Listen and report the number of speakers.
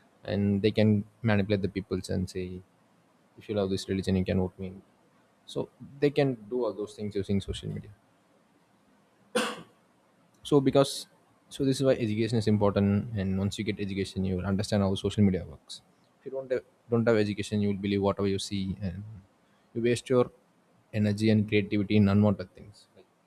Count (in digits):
1